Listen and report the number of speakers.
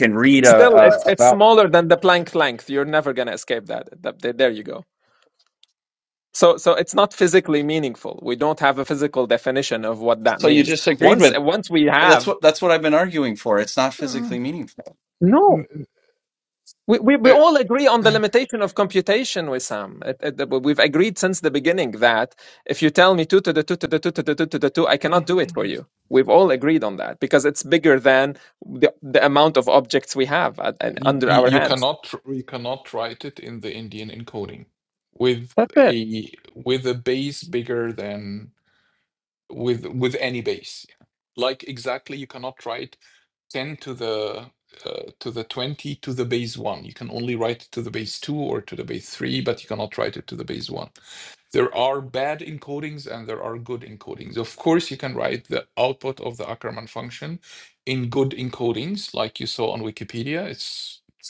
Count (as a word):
three